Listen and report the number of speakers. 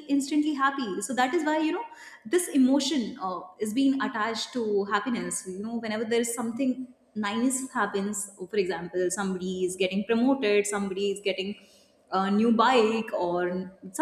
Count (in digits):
1